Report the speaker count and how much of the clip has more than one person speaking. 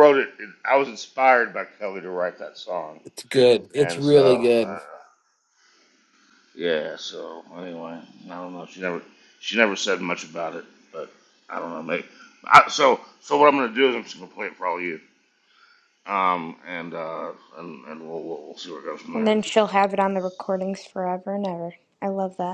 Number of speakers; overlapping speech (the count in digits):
3, about 6%